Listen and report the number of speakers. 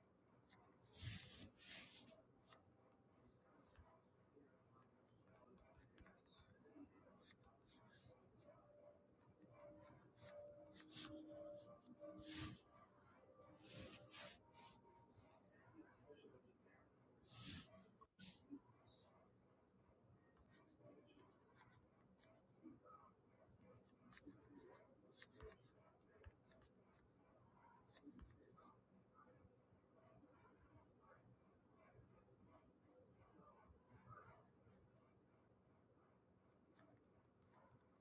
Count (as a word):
zero